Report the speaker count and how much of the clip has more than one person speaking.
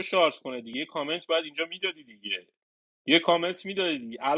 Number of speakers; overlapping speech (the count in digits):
1, no overlap